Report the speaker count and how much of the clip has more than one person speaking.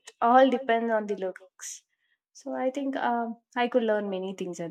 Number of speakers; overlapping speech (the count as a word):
one, no overlap